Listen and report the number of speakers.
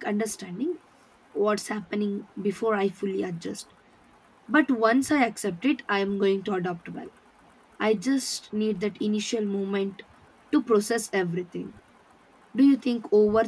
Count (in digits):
1